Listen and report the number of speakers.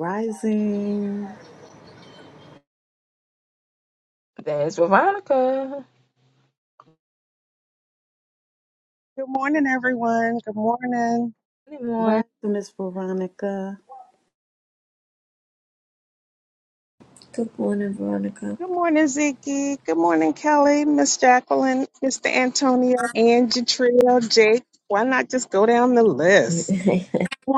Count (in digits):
4